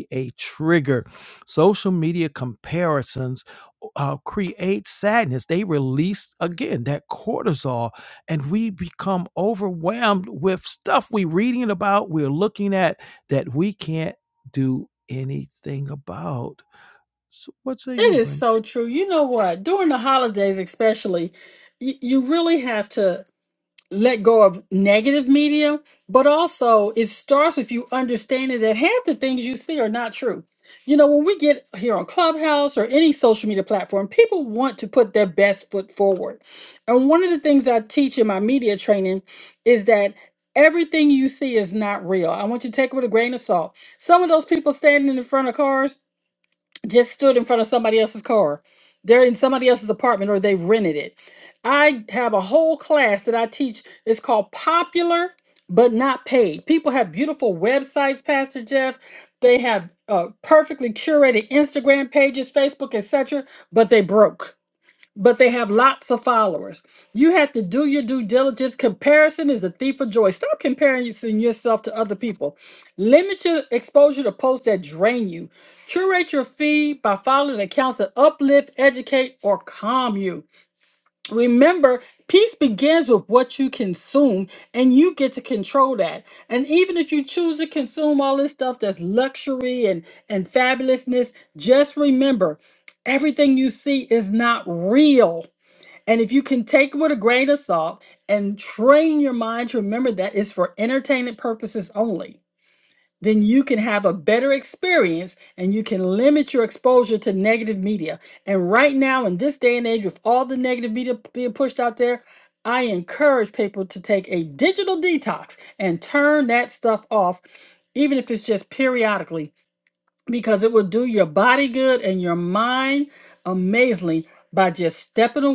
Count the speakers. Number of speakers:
two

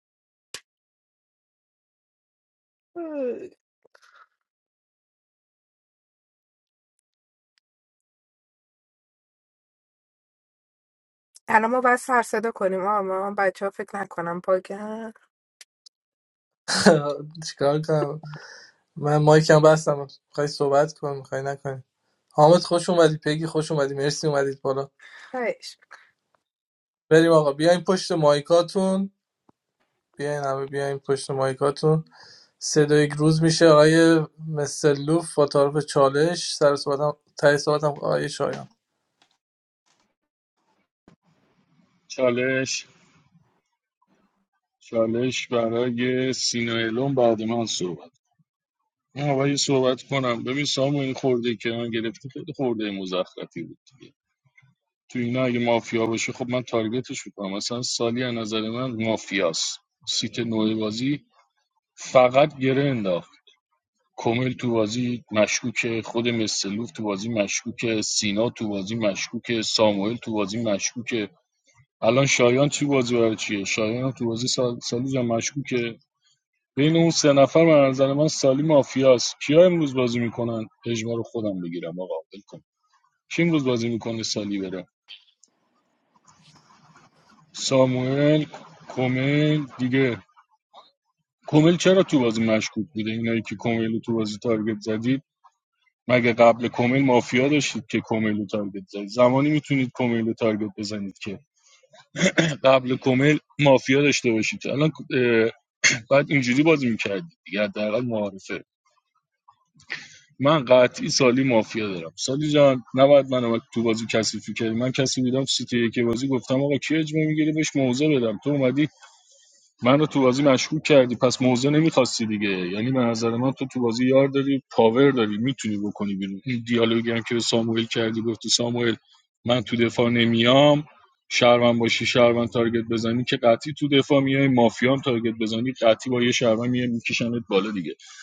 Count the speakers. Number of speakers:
three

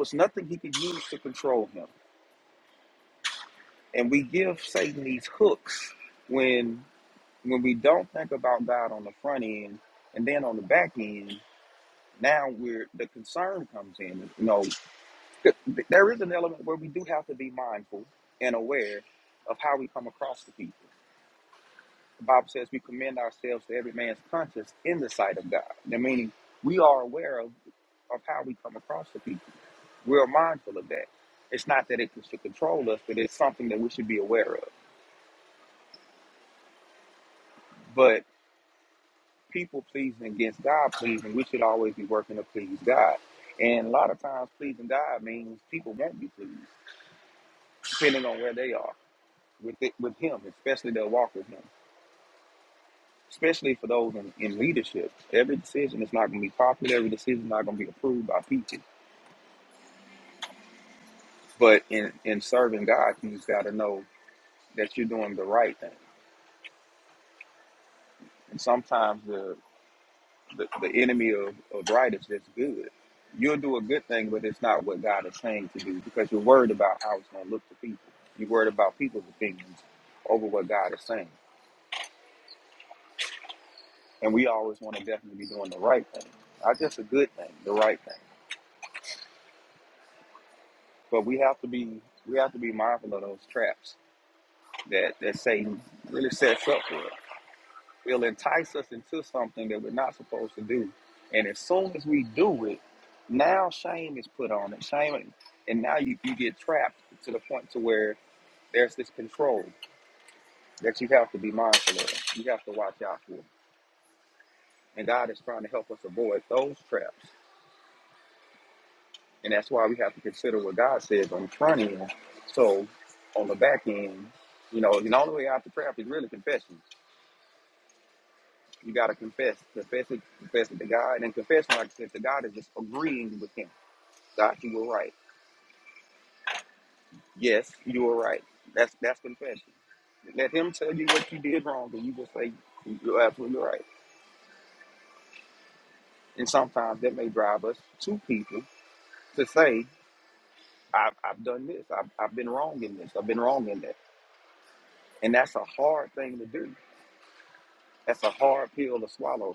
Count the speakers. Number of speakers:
one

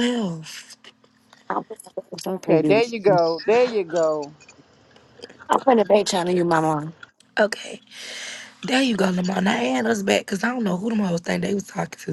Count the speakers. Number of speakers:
three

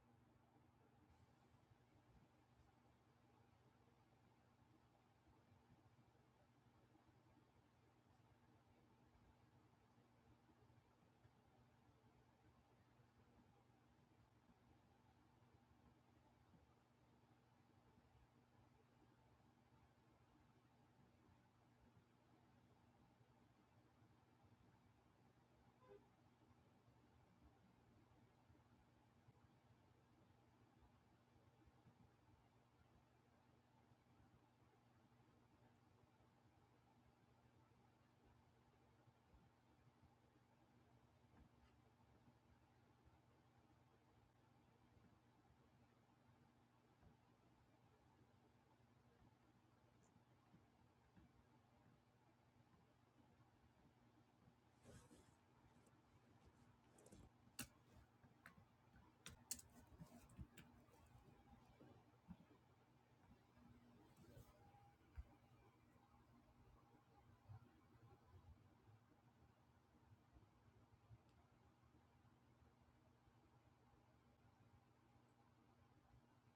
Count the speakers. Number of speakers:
zero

